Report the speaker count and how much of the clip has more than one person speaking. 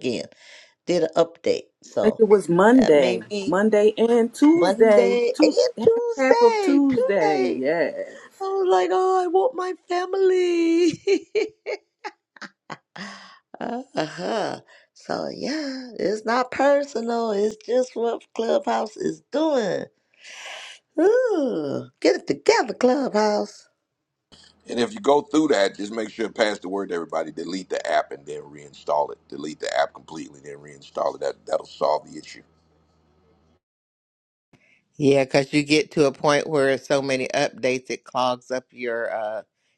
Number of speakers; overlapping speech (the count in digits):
4, about 9%